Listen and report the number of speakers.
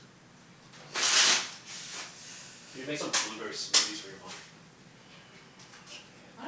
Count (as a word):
one